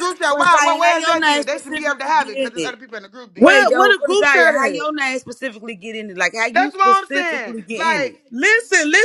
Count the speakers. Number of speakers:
3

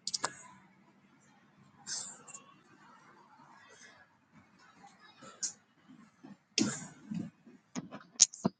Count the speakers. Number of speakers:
0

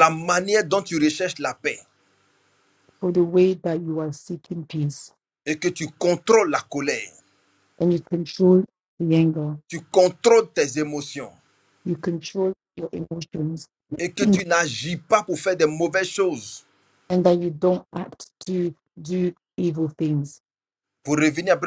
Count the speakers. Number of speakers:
2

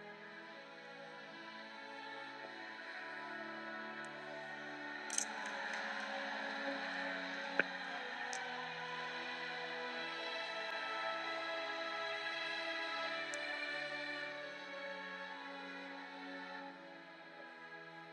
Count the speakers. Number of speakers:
0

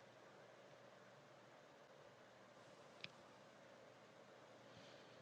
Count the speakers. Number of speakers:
0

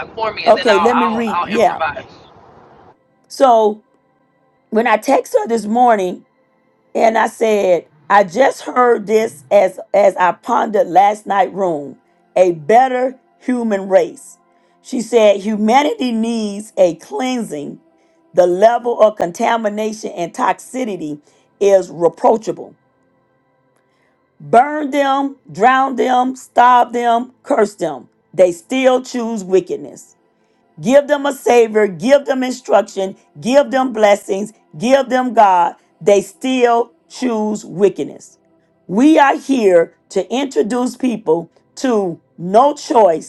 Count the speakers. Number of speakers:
2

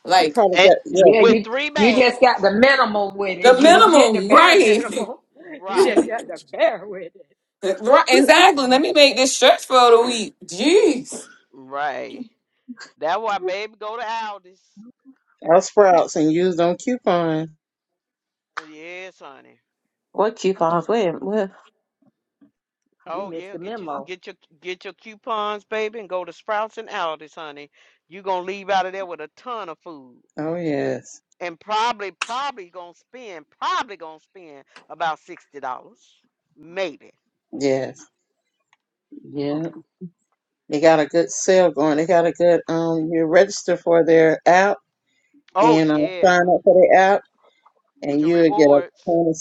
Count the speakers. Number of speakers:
5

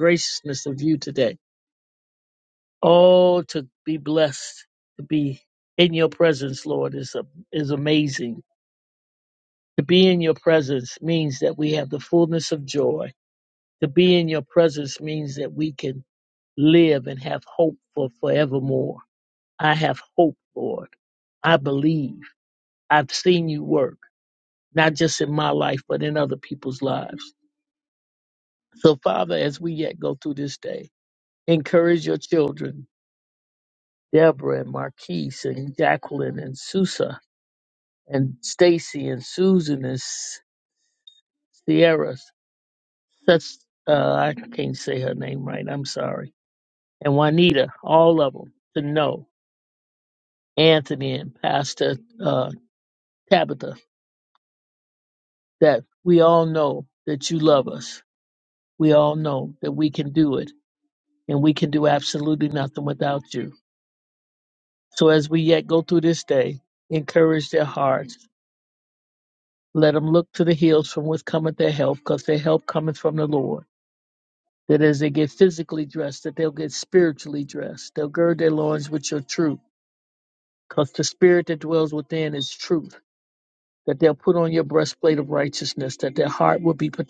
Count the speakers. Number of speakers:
1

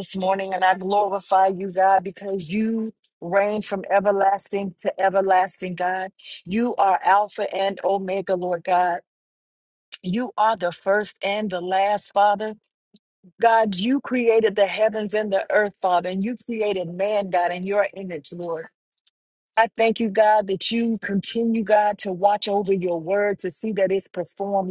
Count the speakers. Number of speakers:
1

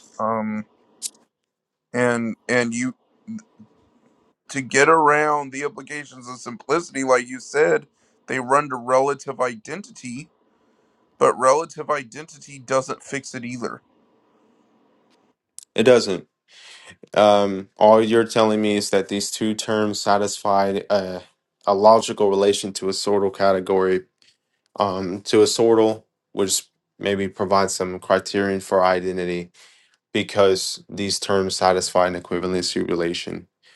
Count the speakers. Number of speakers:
2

